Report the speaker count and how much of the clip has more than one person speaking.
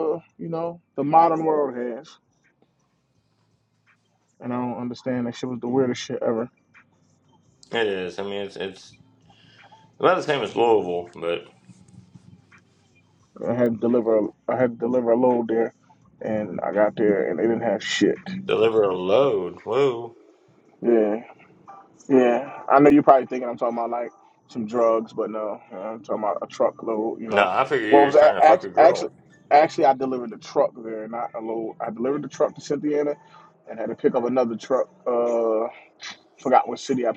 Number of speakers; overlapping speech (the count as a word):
two, about 4%